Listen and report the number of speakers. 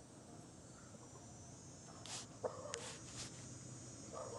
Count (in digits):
0